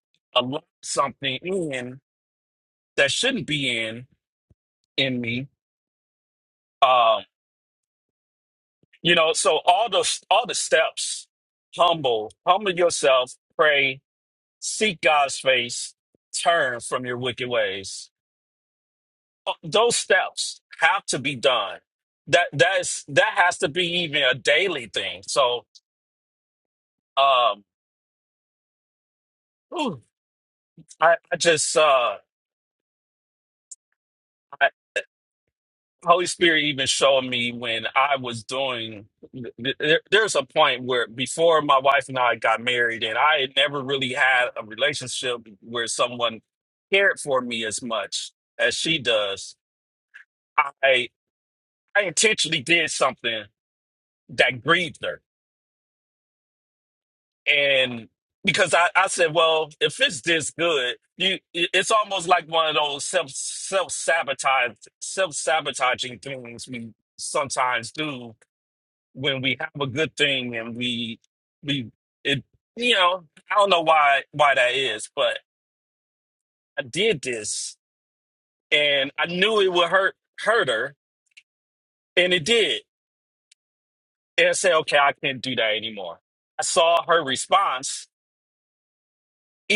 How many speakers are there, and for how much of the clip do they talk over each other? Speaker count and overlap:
1, no overlap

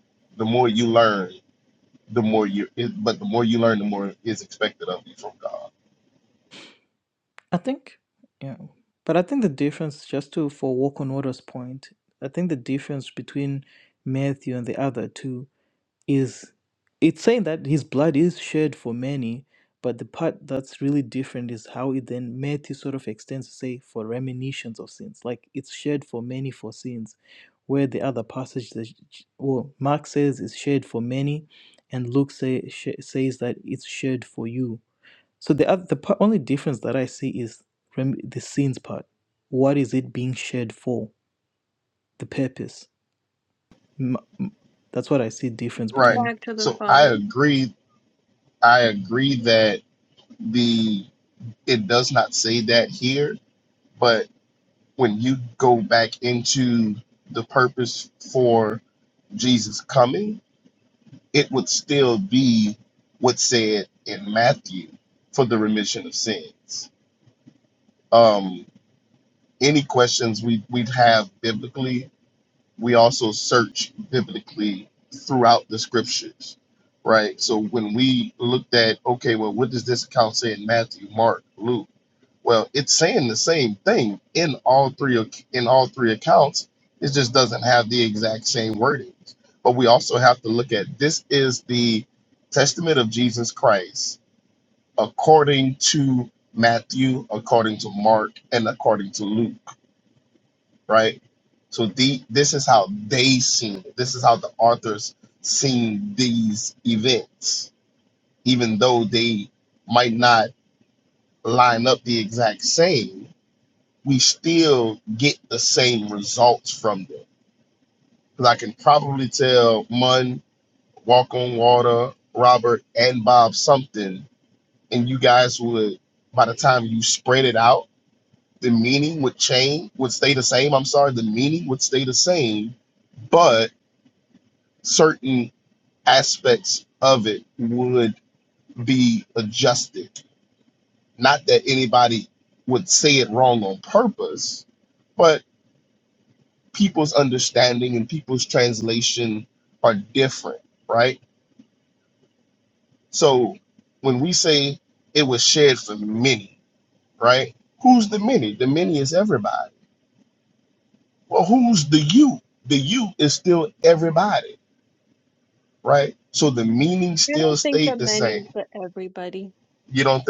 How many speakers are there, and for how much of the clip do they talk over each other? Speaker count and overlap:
3, about 1%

